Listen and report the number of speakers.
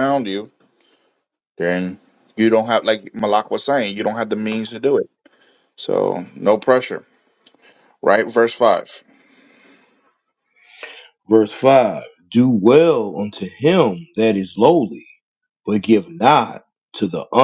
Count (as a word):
two